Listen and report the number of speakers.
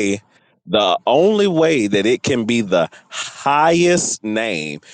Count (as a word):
one